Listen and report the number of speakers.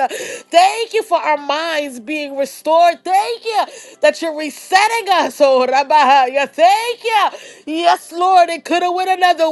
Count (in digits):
1